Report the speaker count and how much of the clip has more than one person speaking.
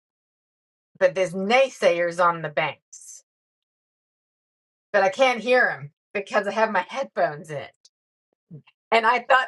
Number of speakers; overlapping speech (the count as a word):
one, no overlap